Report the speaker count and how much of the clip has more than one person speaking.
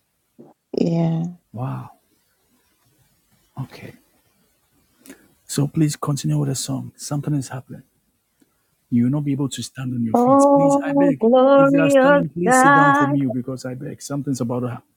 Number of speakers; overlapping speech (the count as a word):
two, about 18%